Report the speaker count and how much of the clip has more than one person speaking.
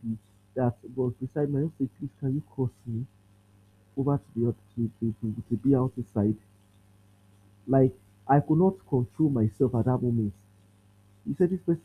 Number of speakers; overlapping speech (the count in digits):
1, no overlap